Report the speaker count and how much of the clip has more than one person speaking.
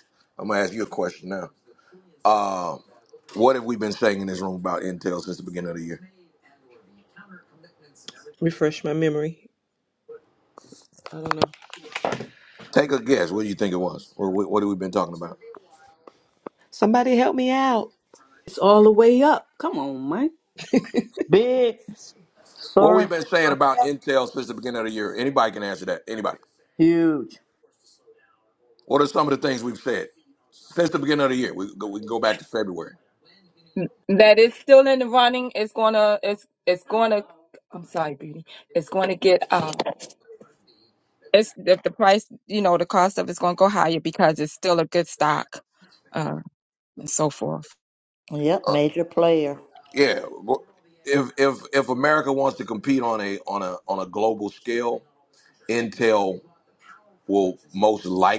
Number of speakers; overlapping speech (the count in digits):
5, about 1%